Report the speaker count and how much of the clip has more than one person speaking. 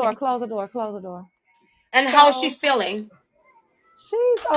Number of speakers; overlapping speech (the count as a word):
two, about 13%